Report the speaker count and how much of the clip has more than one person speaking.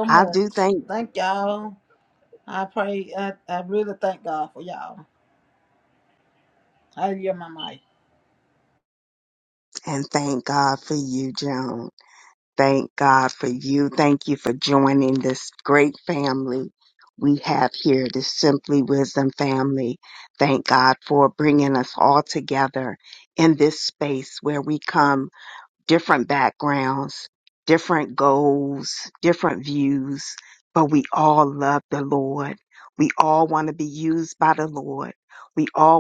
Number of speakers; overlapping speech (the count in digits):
2, about 2%